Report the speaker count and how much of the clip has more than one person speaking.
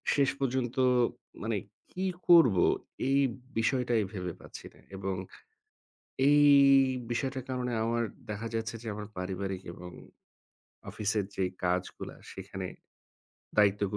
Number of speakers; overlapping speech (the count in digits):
1, no overlap